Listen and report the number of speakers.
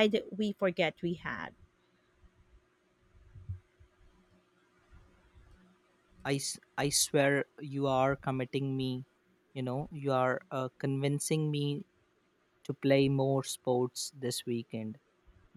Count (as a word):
two